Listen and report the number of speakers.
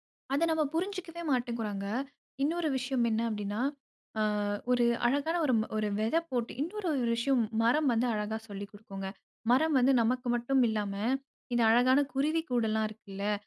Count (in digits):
1